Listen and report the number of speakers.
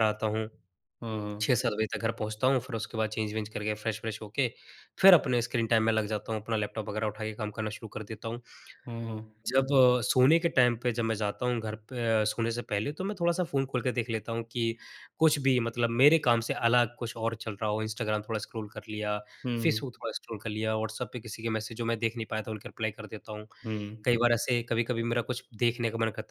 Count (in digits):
2